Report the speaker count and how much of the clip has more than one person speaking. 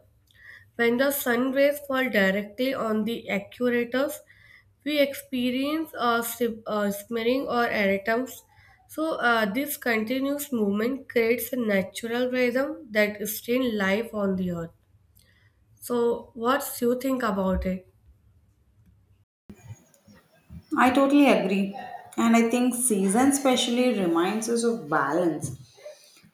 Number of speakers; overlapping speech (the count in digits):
2, no overlap